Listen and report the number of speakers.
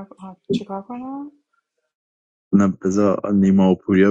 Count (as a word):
two